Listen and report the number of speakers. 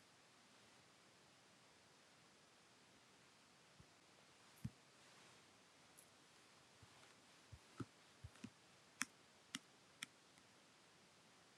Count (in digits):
0